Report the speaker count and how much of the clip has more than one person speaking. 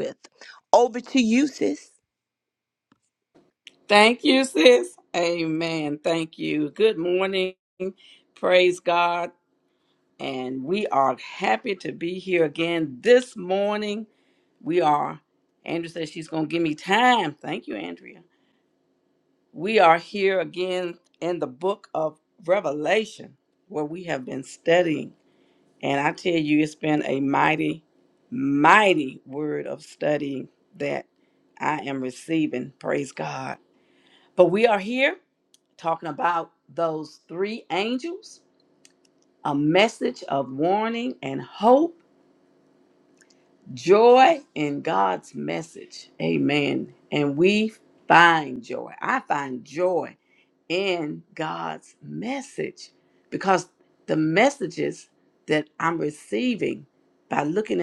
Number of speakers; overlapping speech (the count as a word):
two, no overlap